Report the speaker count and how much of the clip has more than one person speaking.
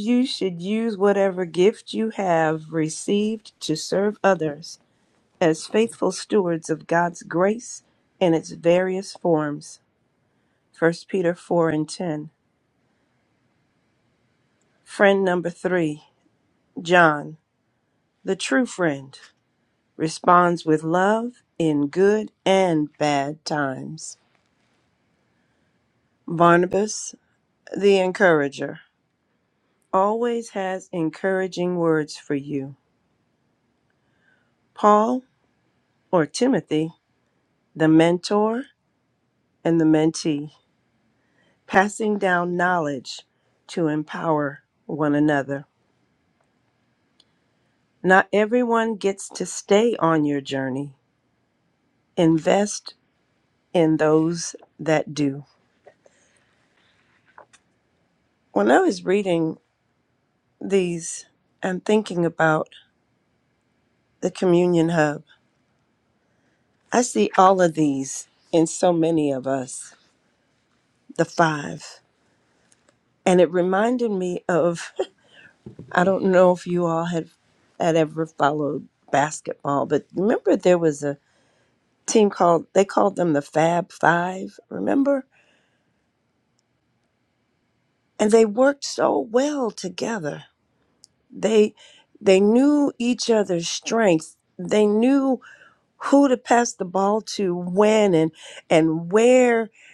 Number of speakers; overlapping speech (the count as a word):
one, no overlap